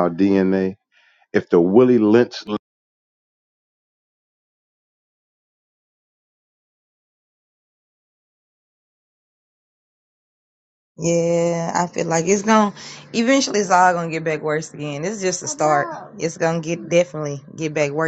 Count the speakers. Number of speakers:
2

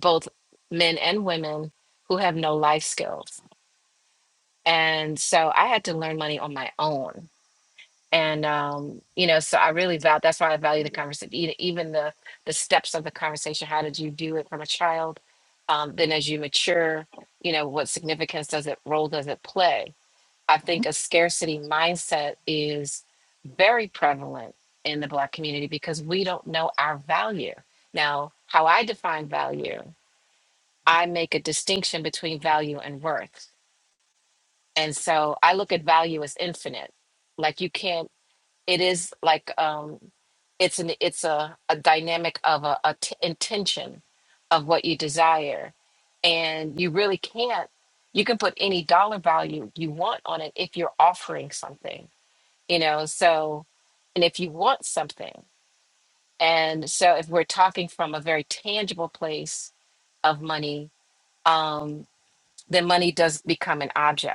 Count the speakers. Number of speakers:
1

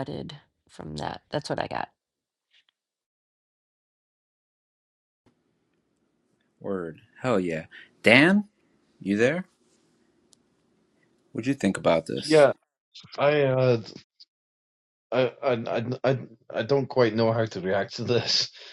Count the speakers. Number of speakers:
3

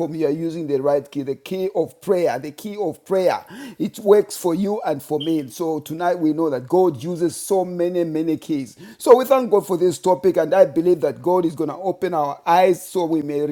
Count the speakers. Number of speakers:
1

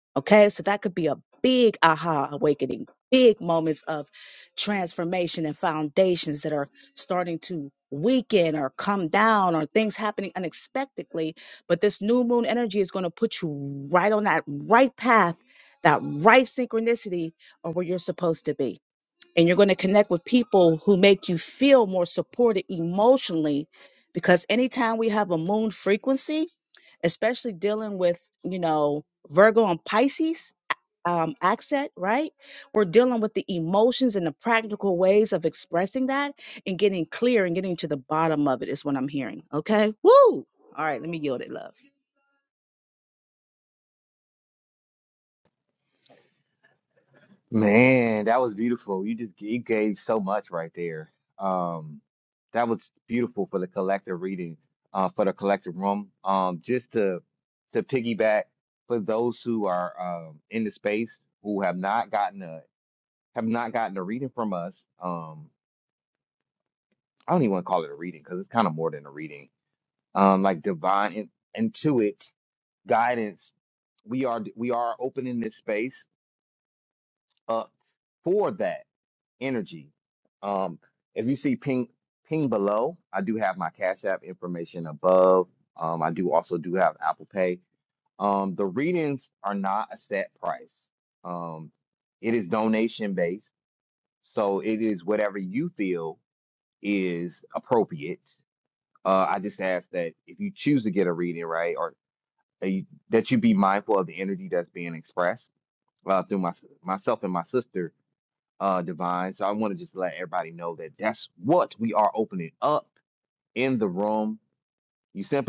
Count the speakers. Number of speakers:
2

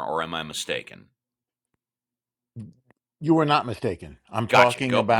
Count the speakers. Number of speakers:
2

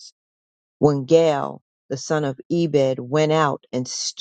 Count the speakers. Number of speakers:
1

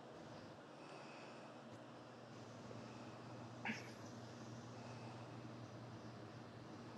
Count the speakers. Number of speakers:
0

